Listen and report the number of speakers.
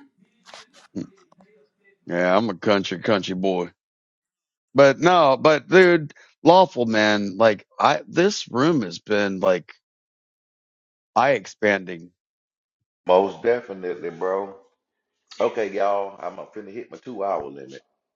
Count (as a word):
two